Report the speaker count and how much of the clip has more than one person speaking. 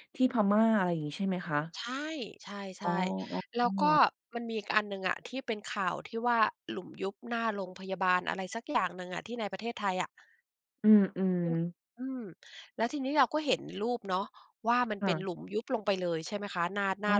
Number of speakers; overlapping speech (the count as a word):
two, about 8%